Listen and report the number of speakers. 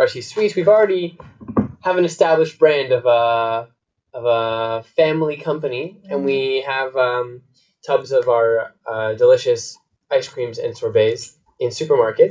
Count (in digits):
1